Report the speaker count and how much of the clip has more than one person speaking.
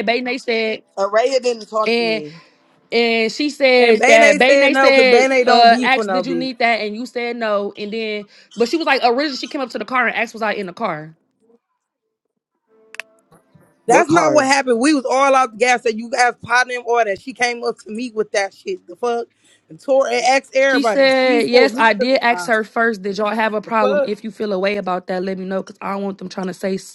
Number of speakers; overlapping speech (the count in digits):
3, about 21%